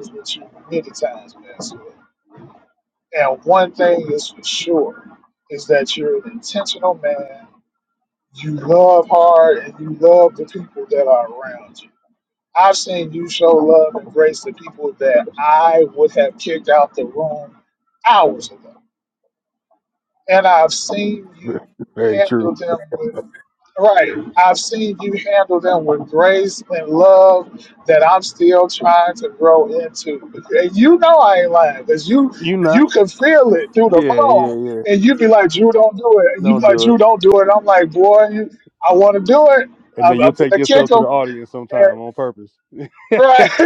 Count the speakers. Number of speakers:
two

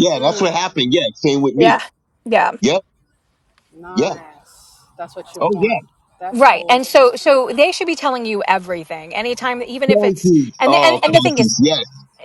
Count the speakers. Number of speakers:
three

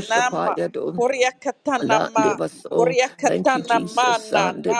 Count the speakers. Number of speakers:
two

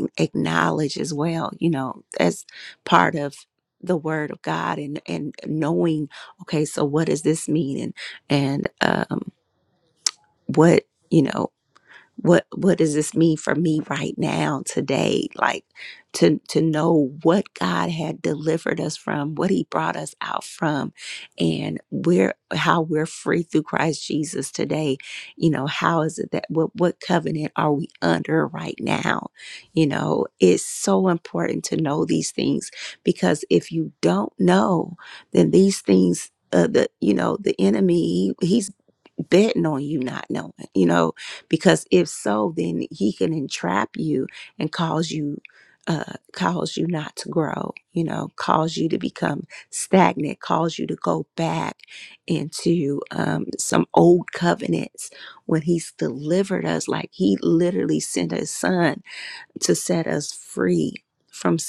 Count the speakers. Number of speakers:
one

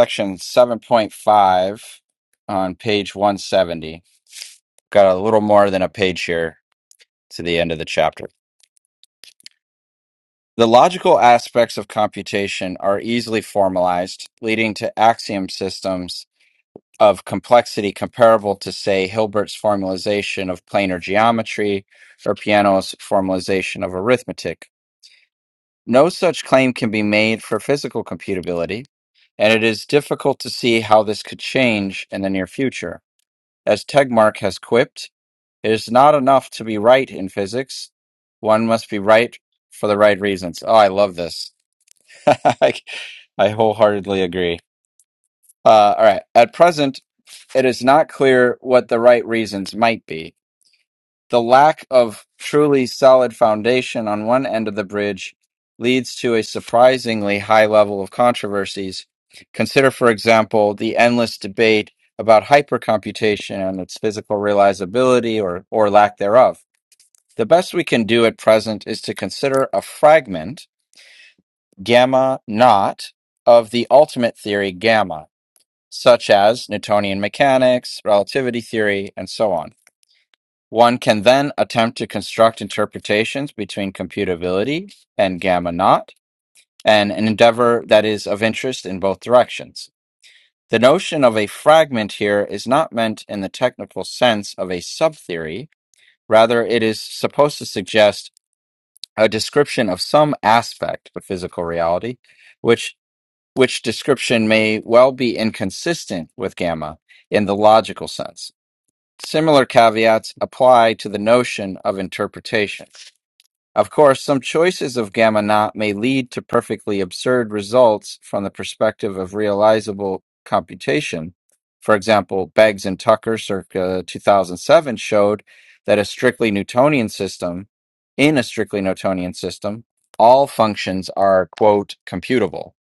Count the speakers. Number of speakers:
one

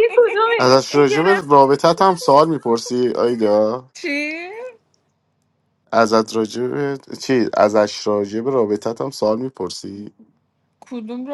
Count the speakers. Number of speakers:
three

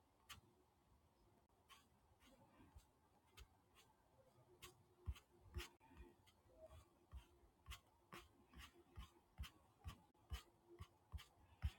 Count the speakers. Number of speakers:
zero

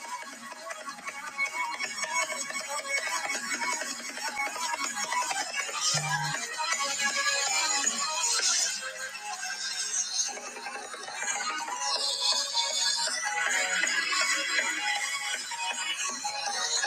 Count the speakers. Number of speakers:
zero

